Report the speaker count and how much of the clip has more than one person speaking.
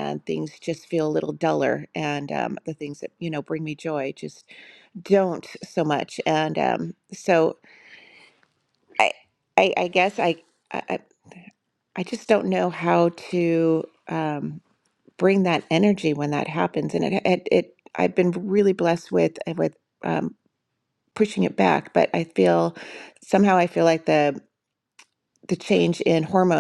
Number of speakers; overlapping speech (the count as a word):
one, no overlap